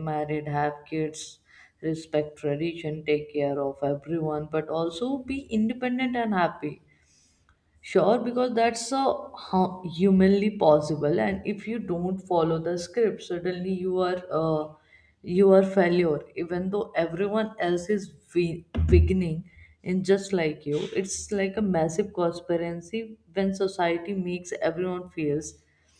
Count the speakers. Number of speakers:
one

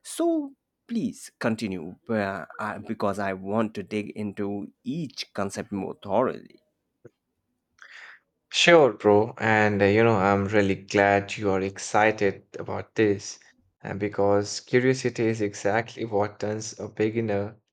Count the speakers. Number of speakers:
two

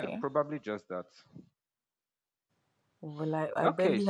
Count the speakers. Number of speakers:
two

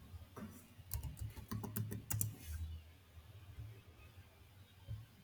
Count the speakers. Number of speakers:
zero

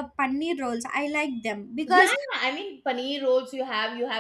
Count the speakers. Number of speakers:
two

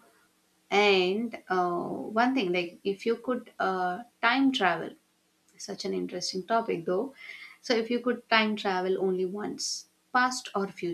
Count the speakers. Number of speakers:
one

